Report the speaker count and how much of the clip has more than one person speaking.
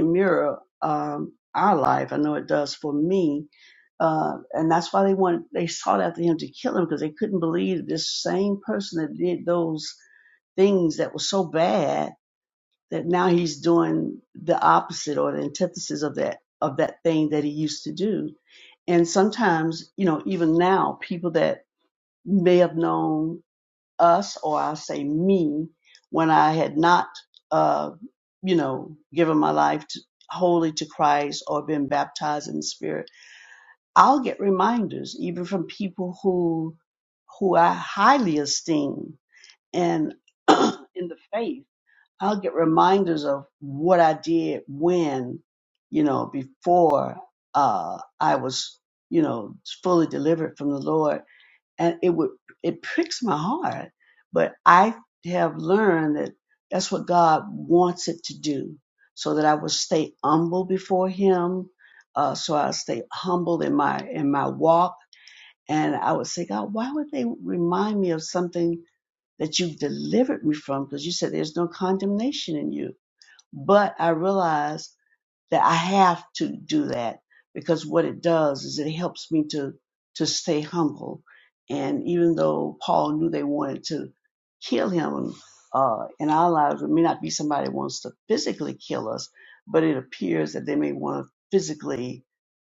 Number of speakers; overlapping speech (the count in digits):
1, no overlap